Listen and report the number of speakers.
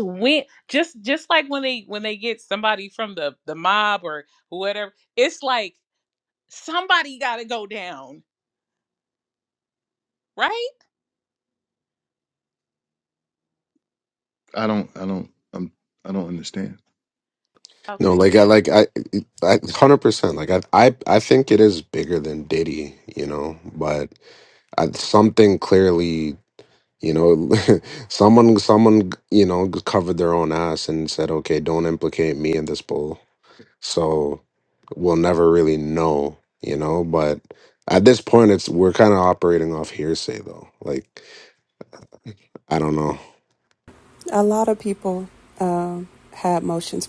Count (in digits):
4